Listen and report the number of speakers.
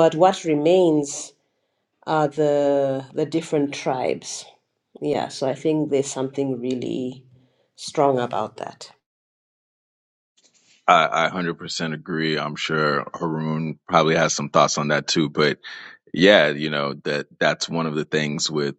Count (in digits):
2